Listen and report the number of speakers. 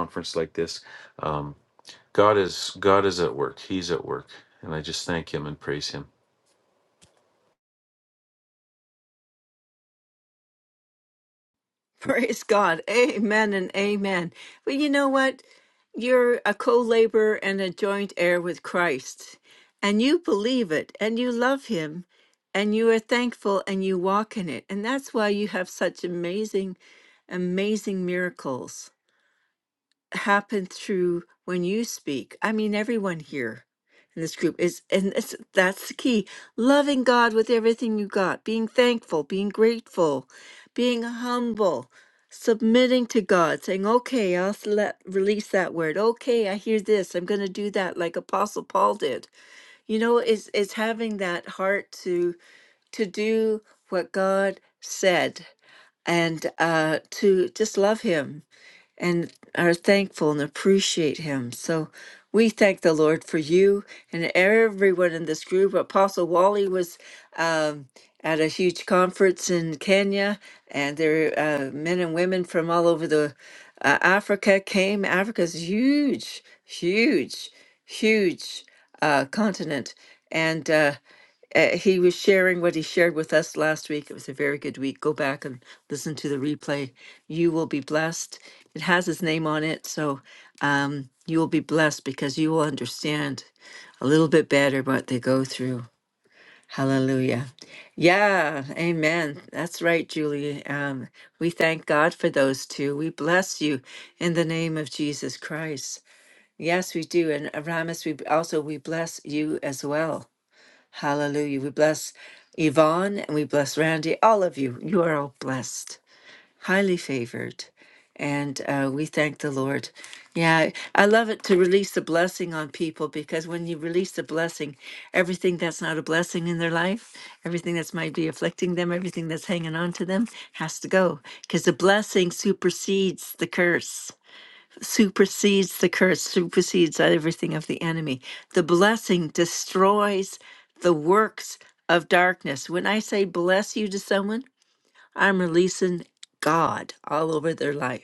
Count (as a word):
two